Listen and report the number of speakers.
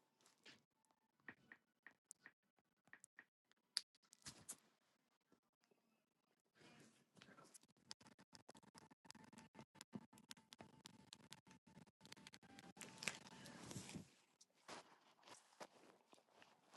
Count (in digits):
0